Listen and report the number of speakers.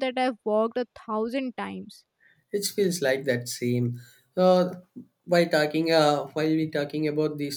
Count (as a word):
two